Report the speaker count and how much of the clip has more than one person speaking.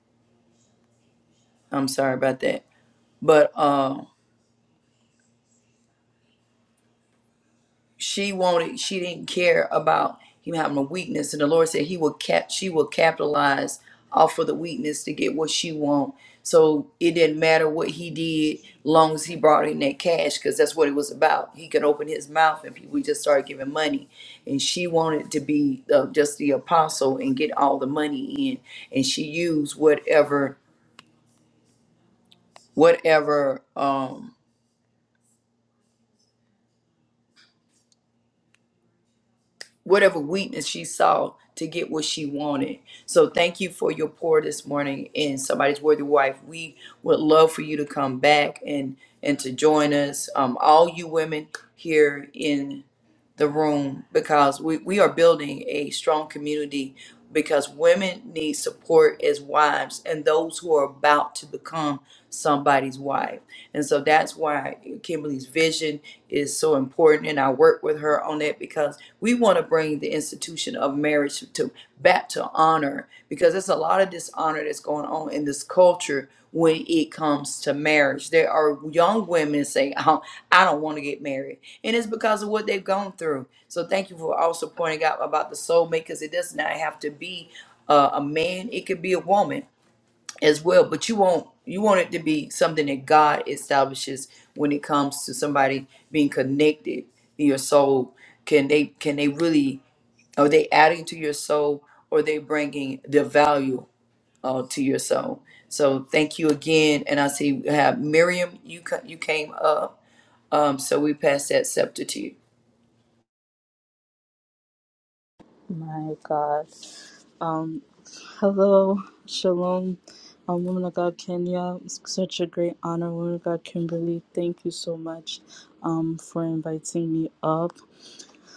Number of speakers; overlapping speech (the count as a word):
two, no overlap